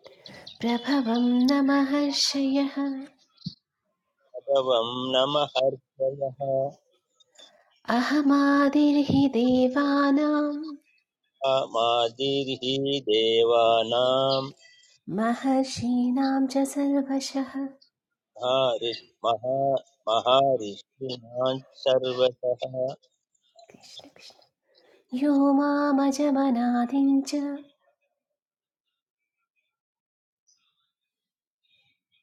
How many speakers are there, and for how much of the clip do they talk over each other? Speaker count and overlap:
2, no overlap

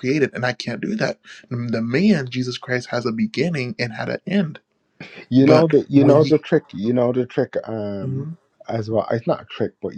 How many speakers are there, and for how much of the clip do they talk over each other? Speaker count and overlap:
2, about 12%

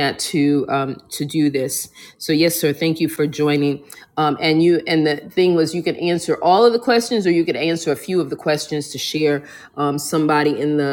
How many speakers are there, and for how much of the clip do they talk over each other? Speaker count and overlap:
1, no overlap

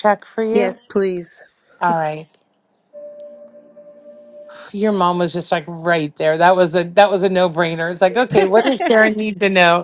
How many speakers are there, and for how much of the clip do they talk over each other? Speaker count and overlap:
2, about 10%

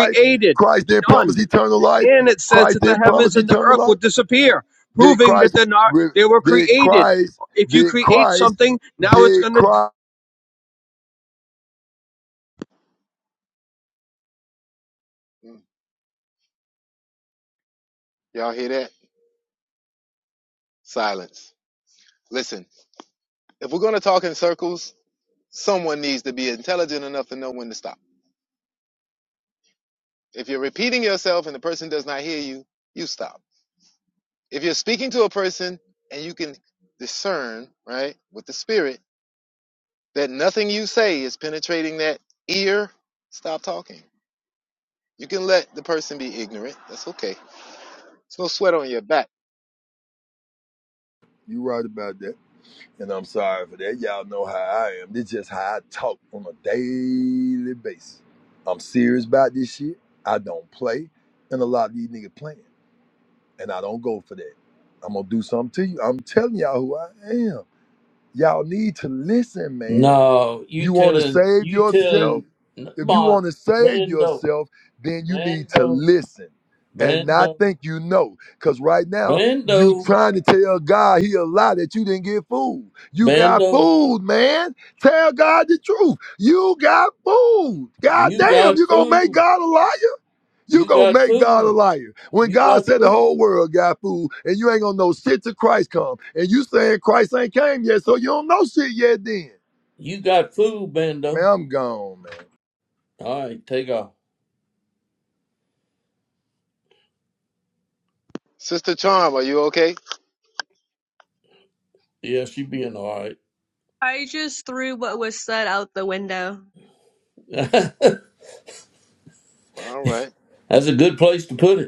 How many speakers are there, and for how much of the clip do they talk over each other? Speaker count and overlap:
5, about 11%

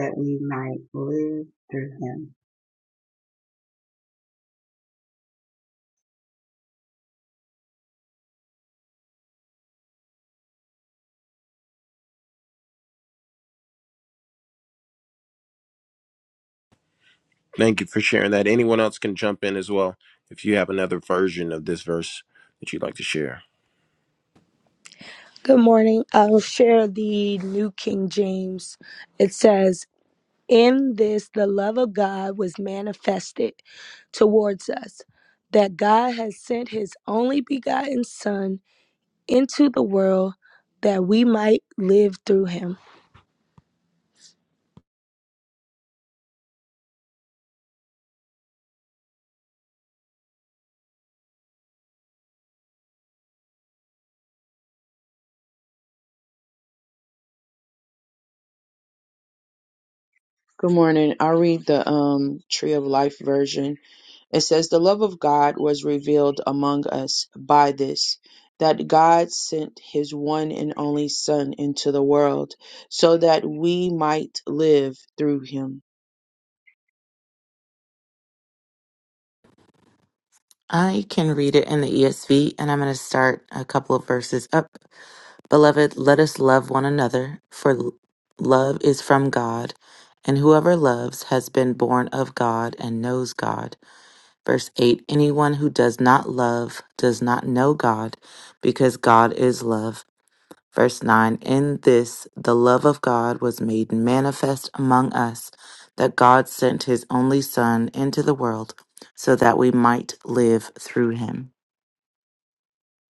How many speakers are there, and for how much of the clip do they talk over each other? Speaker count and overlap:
5, no overlap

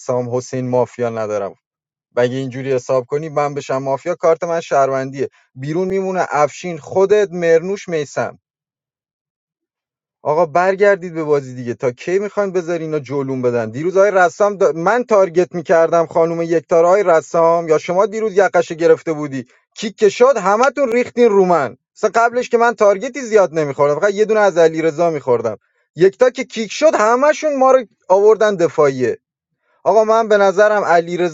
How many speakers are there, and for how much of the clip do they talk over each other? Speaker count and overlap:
1, no overlap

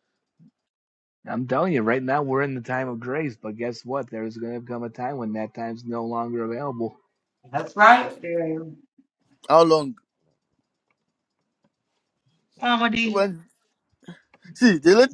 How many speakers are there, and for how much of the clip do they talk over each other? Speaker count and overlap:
3, about 1%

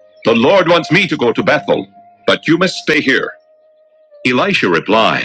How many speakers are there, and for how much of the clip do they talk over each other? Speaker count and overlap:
1, no overlap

